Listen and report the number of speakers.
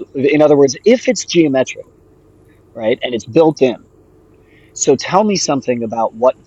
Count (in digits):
1